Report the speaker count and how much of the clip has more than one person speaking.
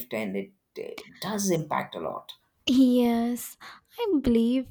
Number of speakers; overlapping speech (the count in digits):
2, no overlap